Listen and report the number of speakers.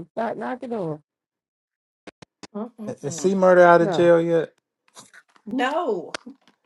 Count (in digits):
3